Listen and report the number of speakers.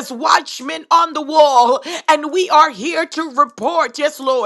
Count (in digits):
1